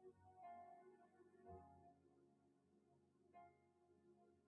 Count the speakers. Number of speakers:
0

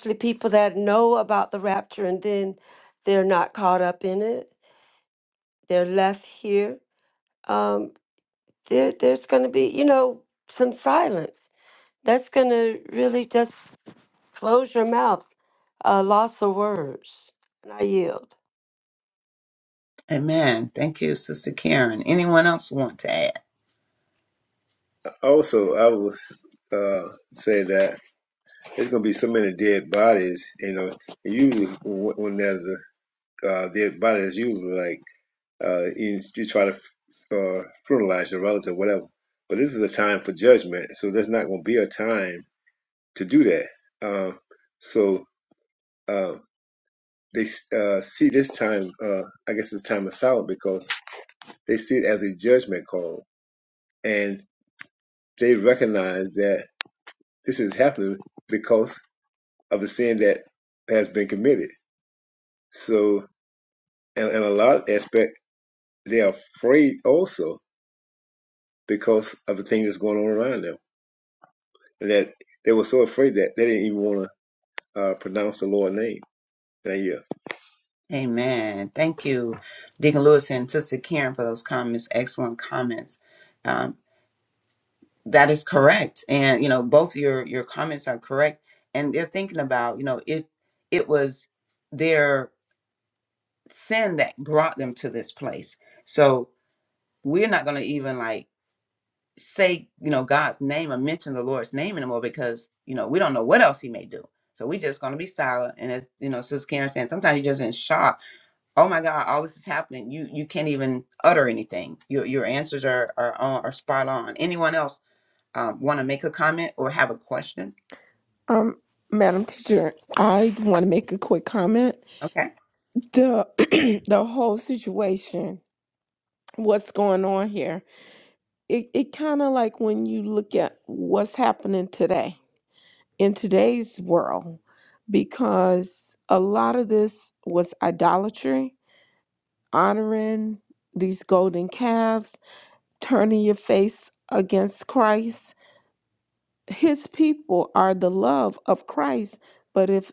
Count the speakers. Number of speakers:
4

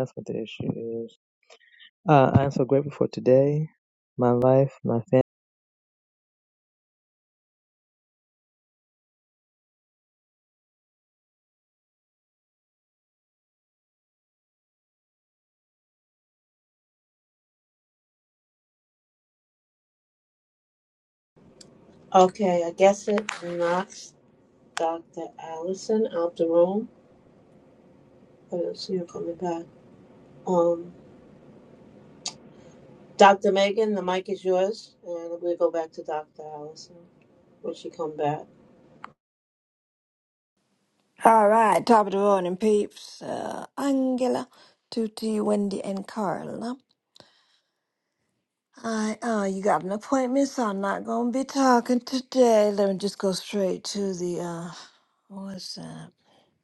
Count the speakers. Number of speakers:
3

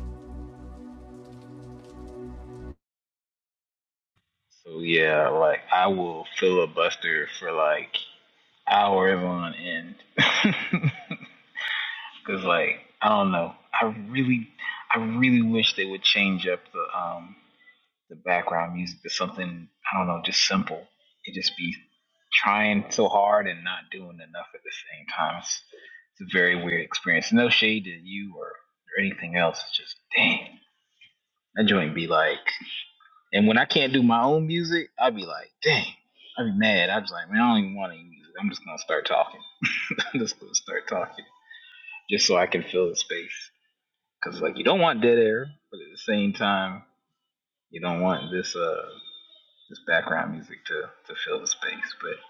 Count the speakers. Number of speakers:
1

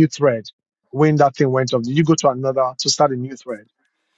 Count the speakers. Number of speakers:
1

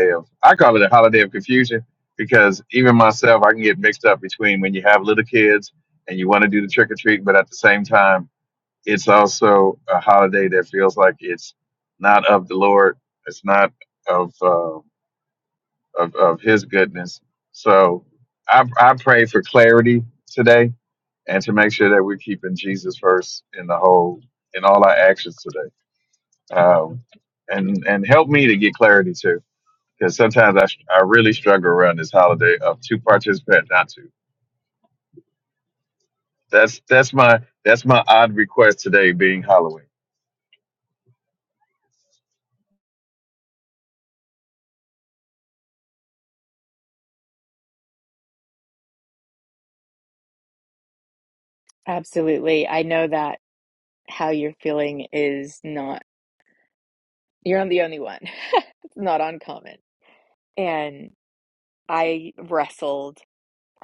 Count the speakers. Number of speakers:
2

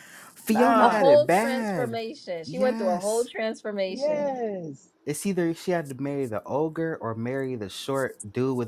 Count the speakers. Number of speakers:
3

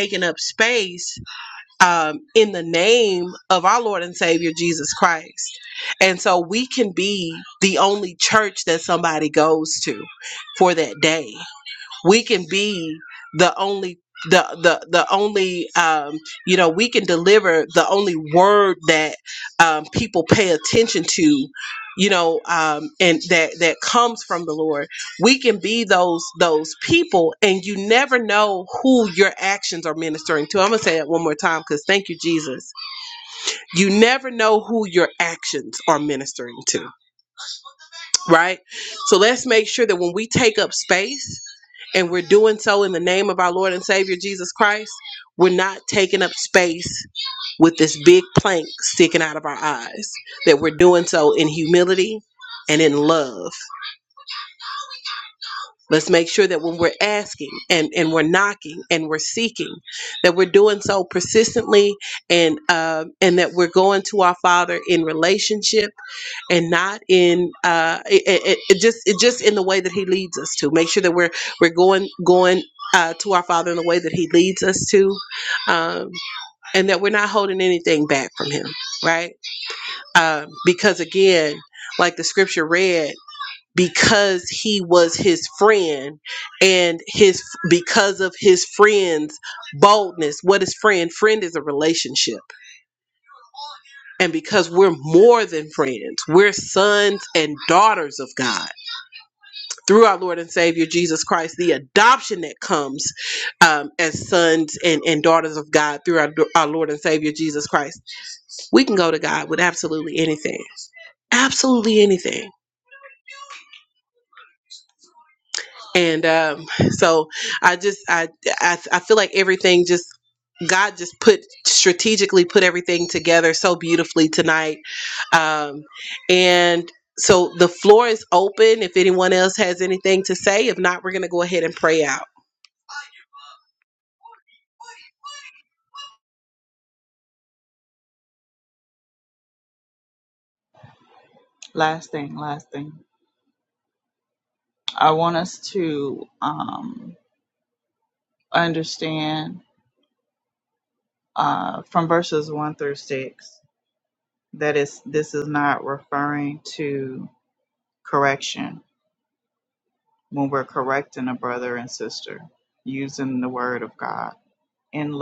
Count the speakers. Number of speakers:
2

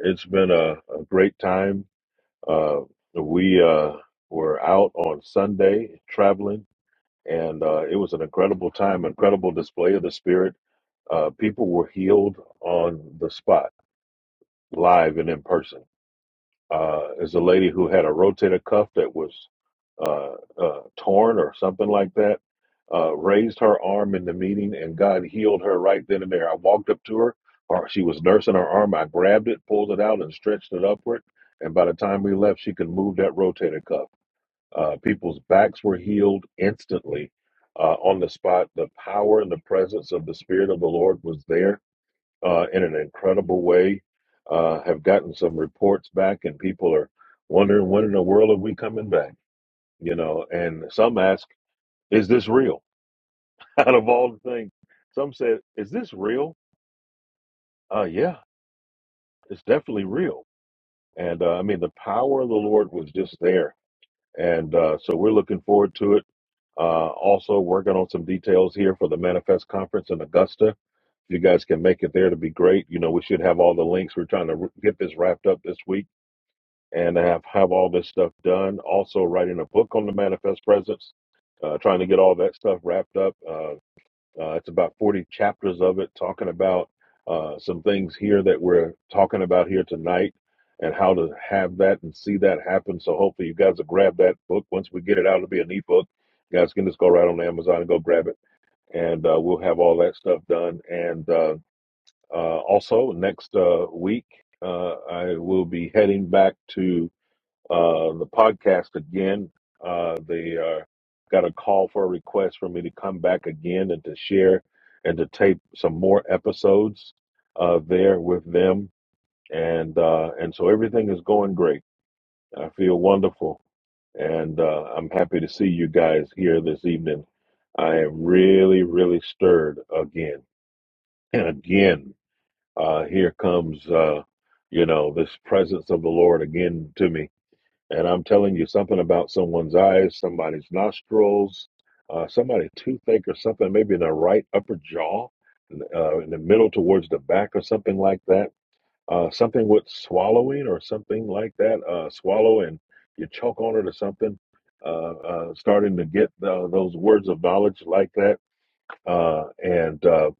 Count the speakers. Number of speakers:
1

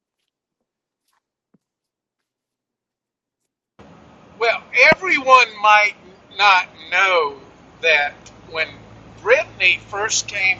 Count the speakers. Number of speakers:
1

